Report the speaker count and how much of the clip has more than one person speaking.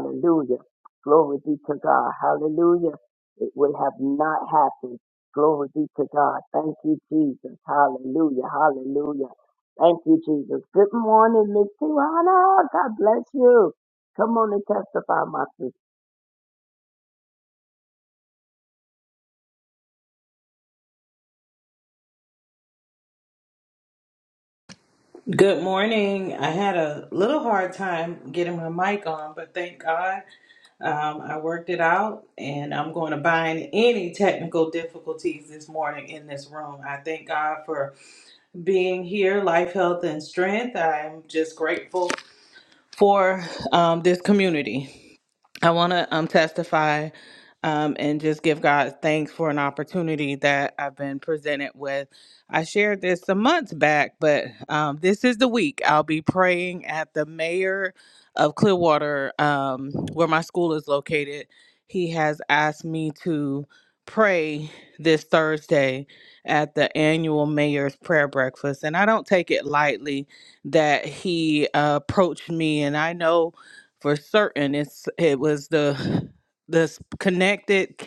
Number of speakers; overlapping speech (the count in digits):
2, no overlap